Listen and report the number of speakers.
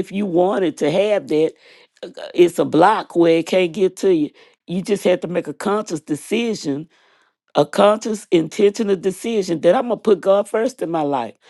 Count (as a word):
one